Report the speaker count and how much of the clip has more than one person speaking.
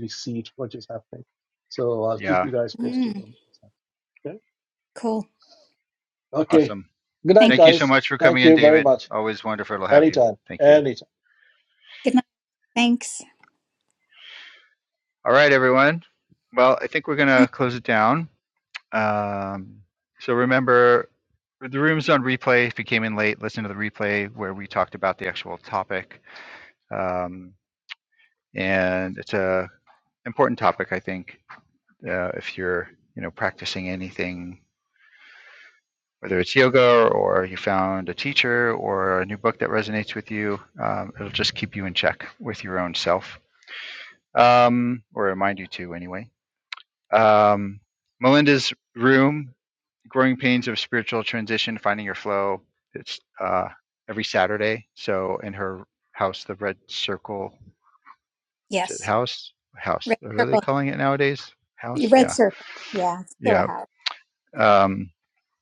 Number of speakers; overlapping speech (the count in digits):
3, about 6%